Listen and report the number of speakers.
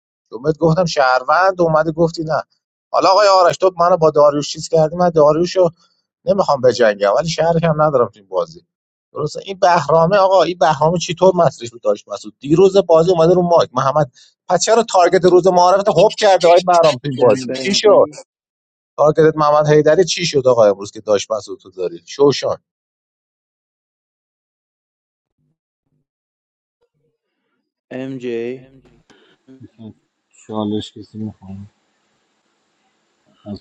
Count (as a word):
three